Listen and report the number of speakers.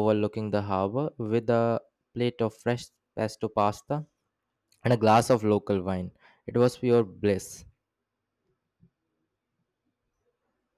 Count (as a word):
one